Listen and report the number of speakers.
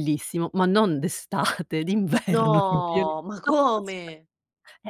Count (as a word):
two